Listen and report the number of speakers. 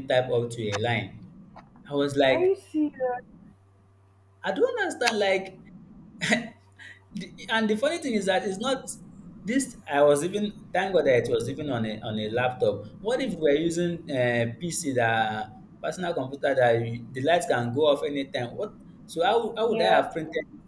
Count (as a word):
two